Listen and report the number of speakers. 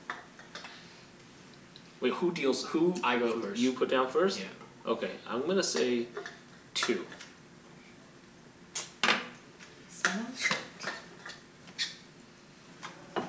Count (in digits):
2